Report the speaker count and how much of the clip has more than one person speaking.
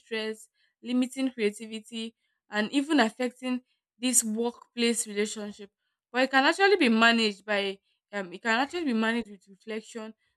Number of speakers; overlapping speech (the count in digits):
1, no overlap